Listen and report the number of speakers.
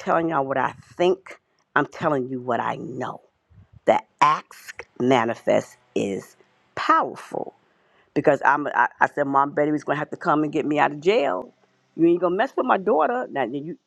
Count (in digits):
1